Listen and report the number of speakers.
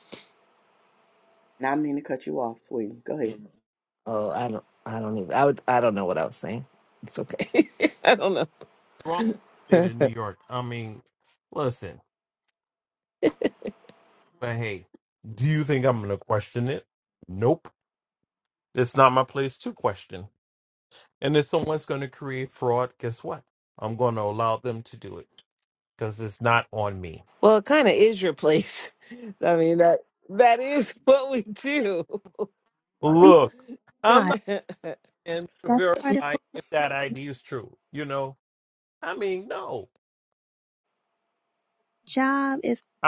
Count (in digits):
4